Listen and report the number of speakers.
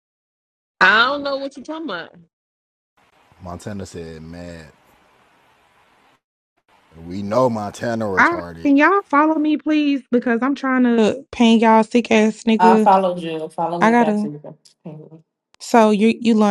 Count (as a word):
four